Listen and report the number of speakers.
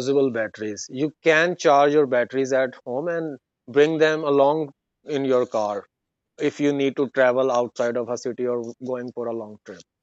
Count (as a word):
one